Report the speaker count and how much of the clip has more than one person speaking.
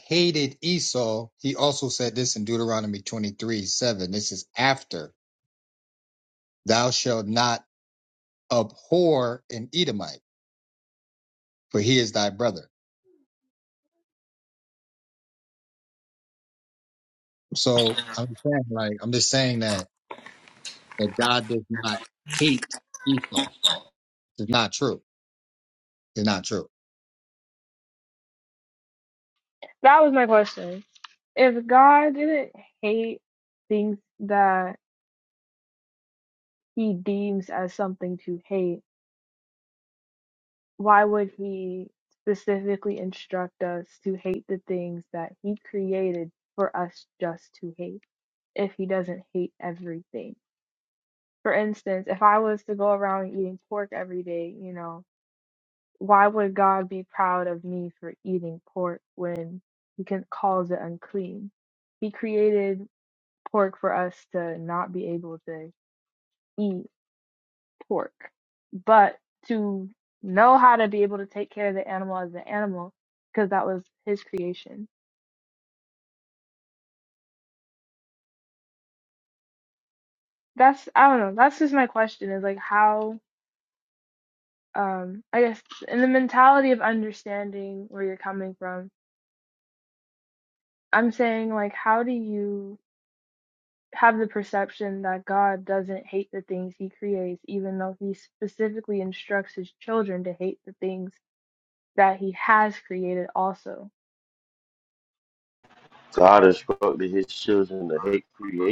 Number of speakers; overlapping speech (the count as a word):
three, no overlap